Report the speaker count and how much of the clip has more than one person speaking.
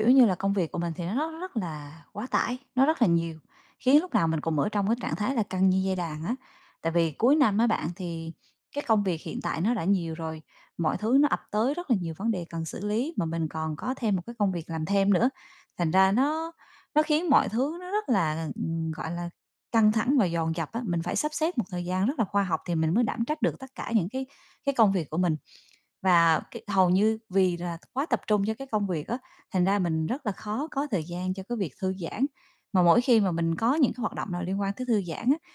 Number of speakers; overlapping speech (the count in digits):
1, no overlap